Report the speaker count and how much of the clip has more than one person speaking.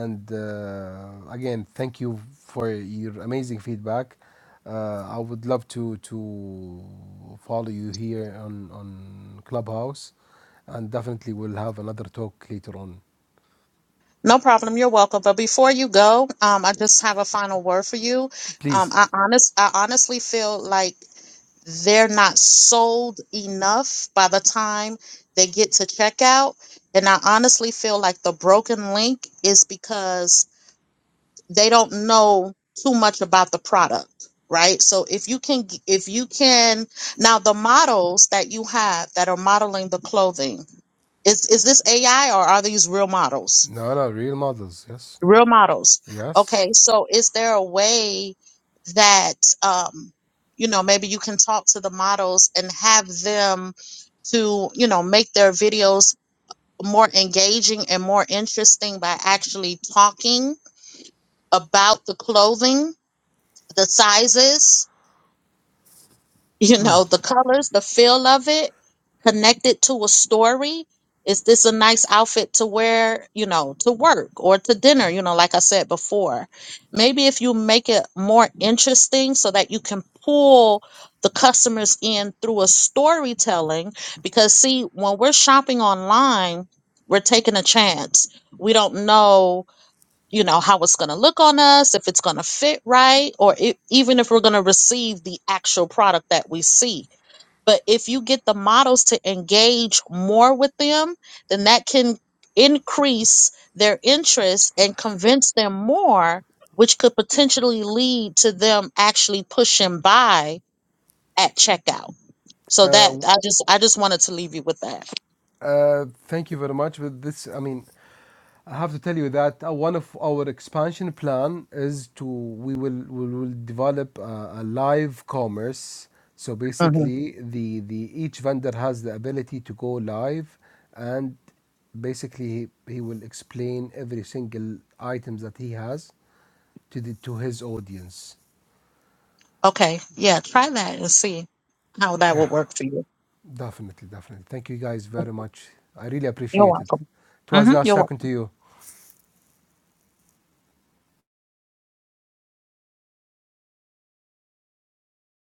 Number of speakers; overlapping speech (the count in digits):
2, about 1%